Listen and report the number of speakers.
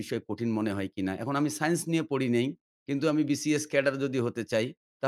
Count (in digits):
1